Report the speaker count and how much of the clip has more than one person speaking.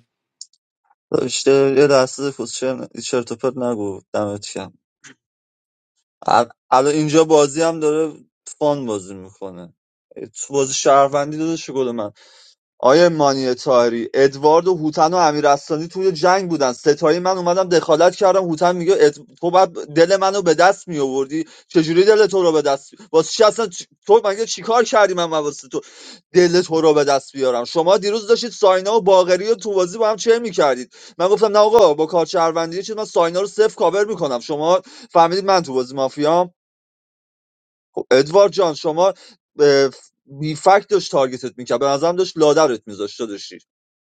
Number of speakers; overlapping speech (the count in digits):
1, no overlap